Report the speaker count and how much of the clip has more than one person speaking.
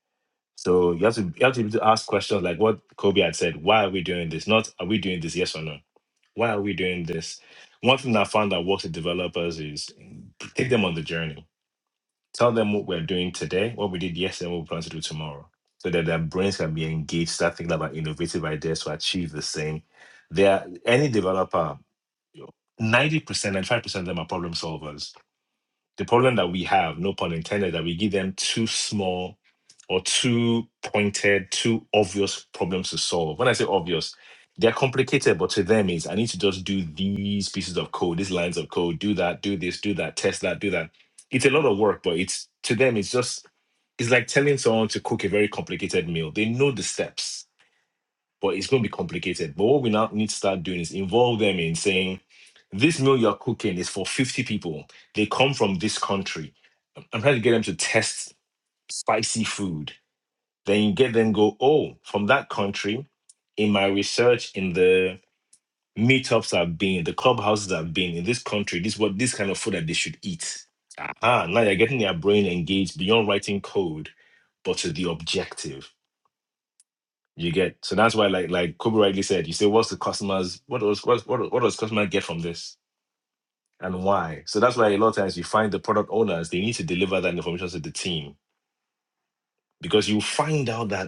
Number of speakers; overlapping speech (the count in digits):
1, no overlap